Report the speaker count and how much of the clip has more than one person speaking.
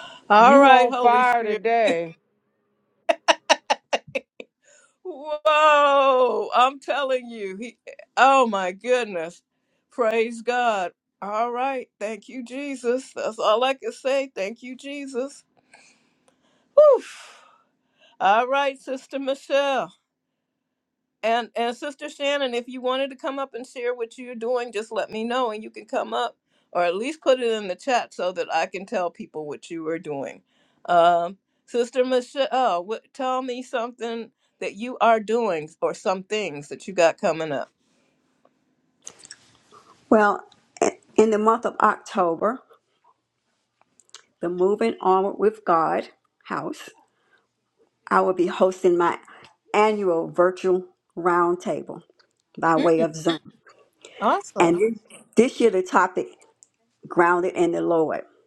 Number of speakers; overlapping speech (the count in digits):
3, about 3%